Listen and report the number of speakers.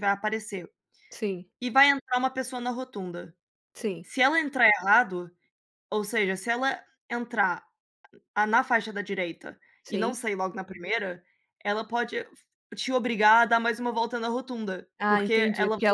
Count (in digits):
2